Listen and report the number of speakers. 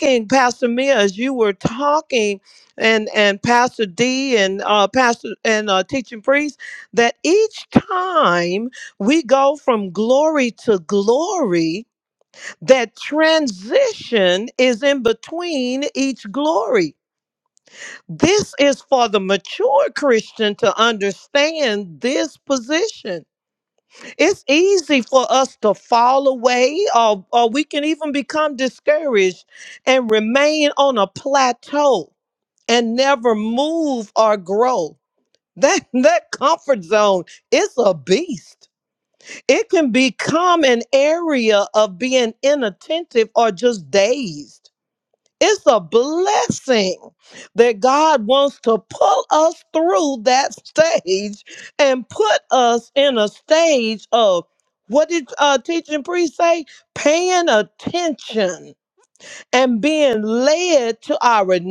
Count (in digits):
1